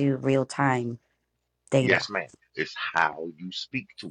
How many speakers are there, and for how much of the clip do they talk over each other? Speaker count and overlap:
two, about 6%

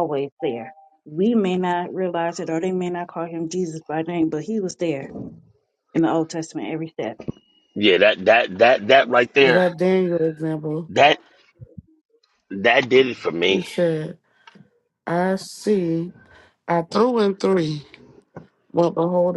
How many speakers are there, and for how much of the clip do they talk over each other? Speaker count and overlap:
three, about 3%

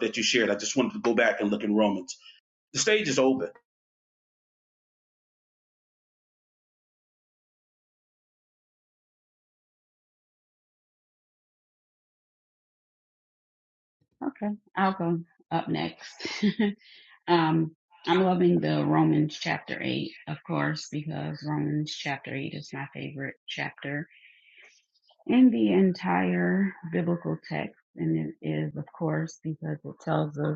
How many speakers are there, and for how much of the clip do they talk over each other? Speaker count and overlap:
two, no overlap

